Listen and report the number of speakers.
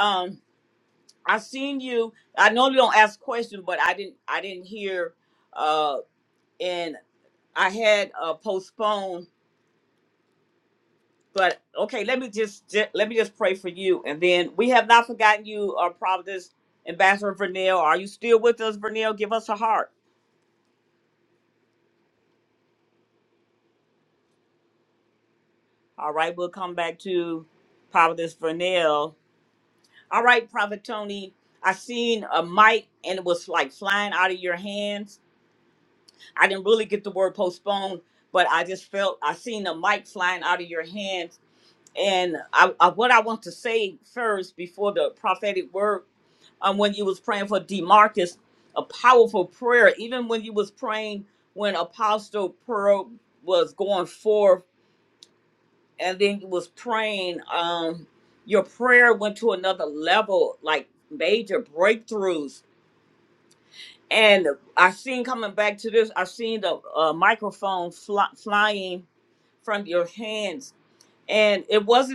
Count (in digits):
1